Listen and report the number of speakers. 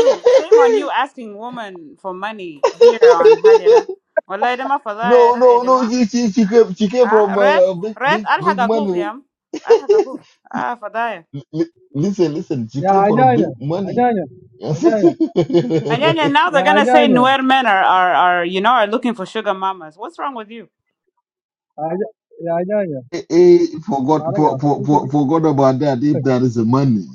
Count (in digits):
3